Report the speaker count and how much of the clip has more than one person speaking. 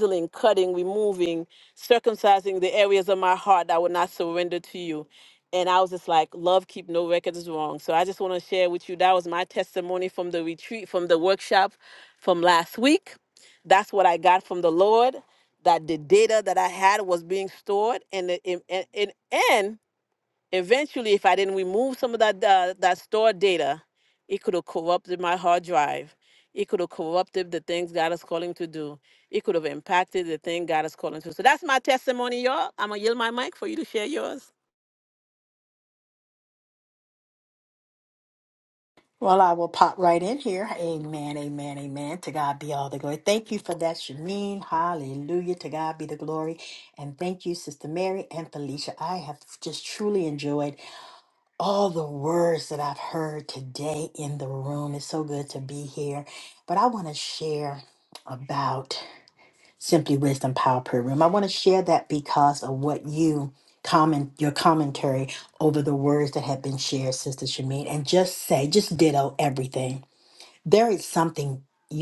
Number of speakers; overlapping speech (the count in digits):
2, no overlap